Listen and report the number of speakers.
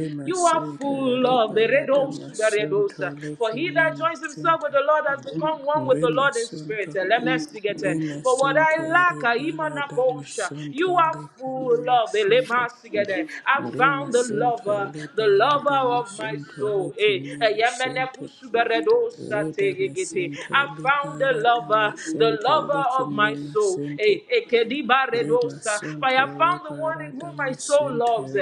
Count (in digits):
2